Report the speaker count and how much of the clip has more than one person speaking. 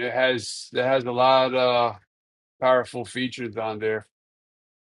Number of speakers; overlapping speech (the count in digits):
1, no overlap